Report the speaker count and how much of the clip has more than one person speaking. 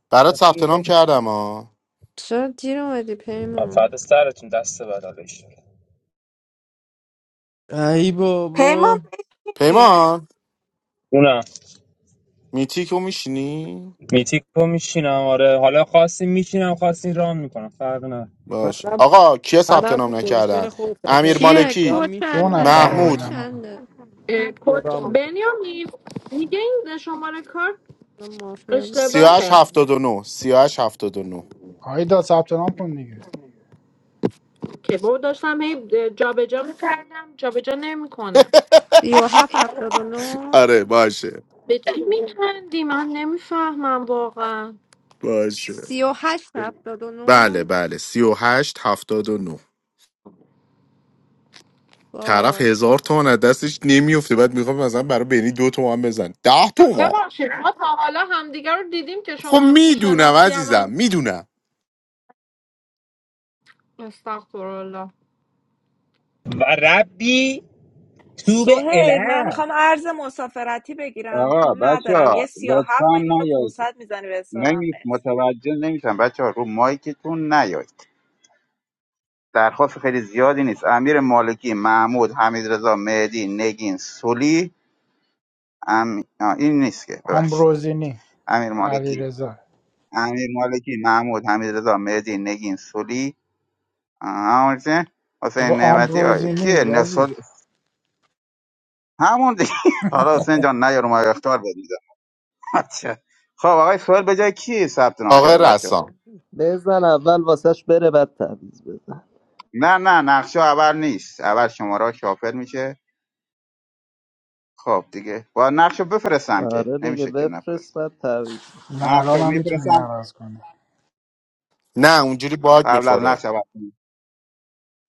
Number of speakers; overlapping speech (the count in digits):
9, about 15%